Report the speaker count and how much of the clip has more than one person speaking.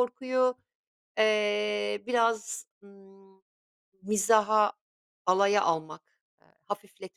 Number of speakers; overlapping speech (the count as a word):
one, no overlap